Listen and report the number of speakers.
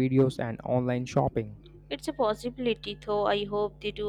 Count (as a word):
two